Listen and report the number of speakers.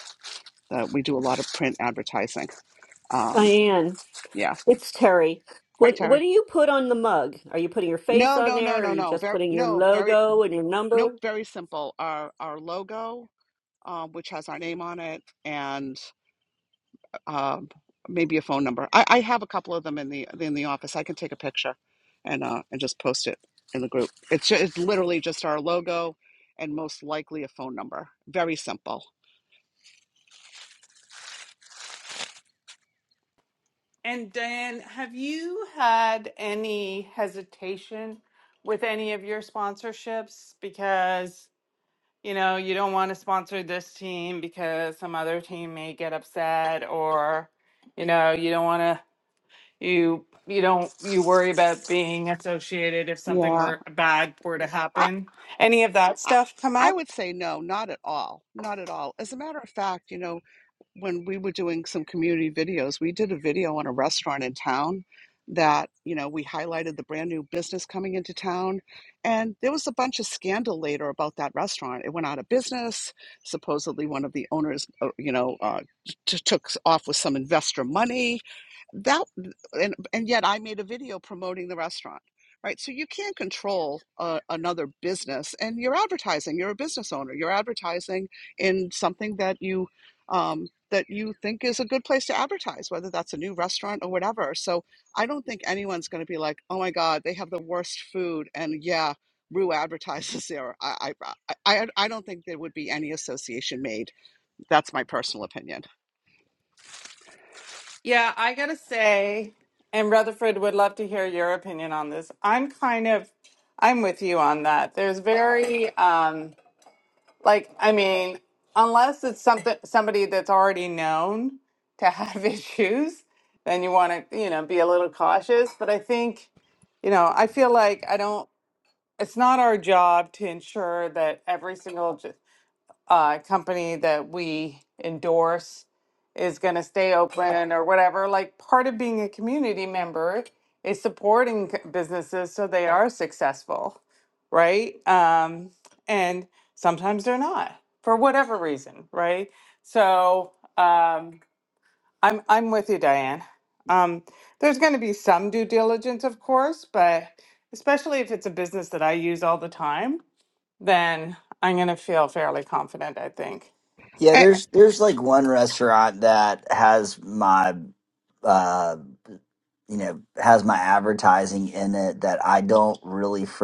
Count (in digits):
4